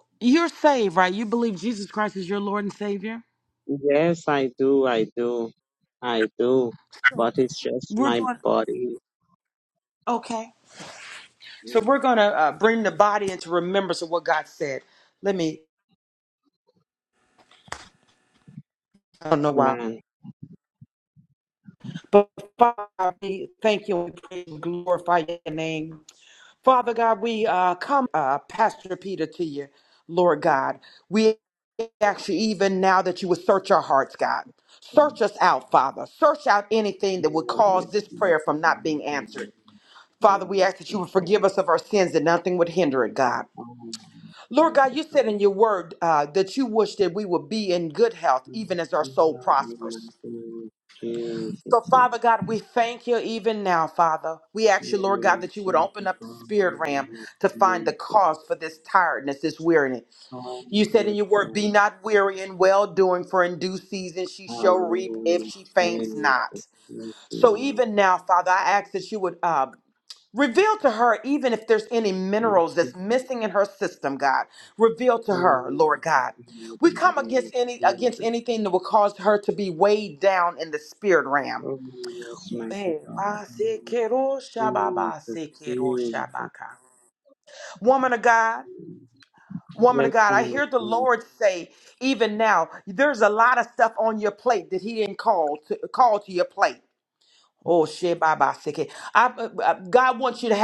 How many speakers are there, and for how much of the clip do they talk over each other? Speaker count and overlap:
2, about 8%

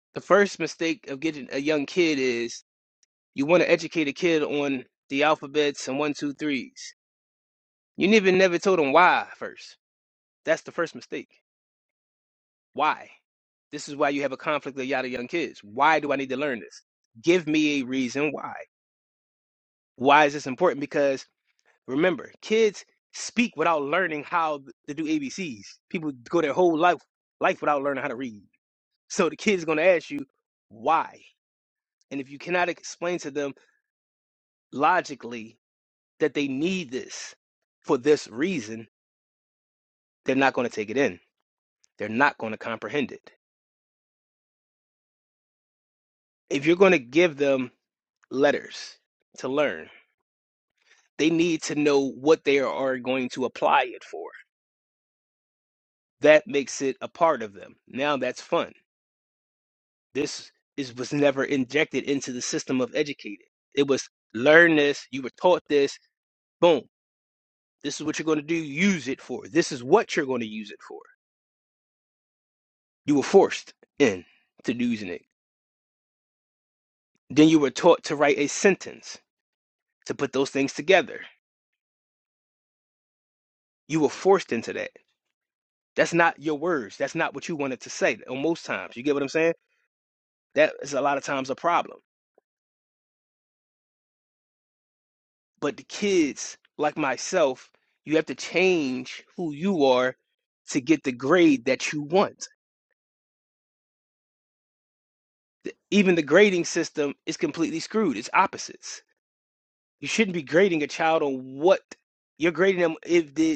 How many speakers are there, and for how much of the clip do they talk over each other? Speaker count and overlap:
1, no overlap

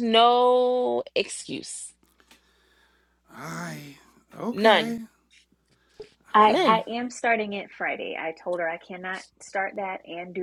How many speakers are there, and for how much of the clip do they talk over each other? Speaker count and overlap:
3, about 8%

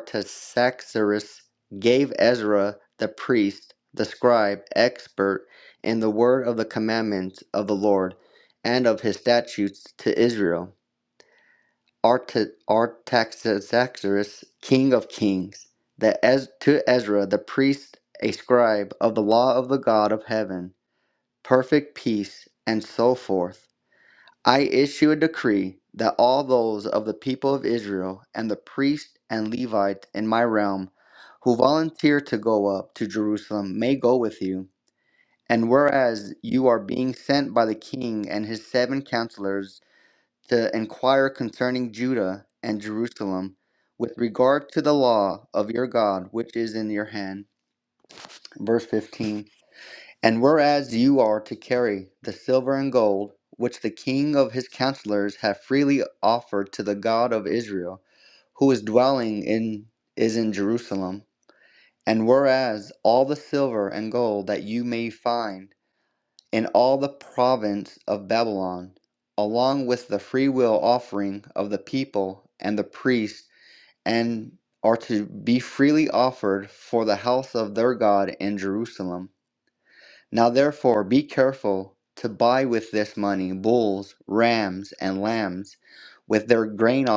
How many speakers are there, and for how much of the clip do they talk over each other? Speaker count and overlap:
1, no overlap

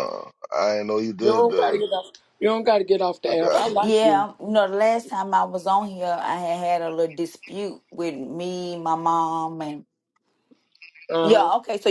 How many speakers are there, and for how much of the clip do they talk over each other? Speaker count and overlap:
3, about 14%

